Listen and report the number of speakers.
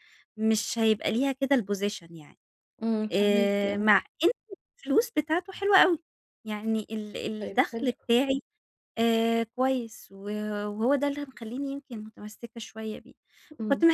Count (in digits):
2